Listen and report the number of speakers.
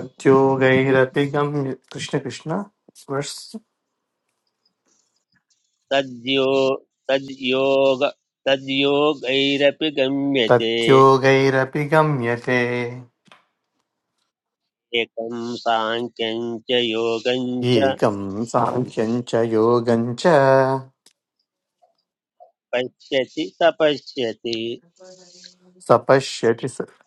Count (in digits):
2